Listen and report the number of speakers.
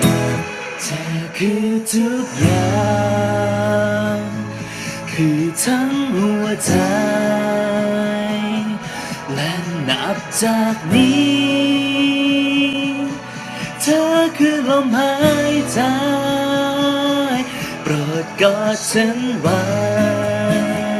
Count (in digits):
1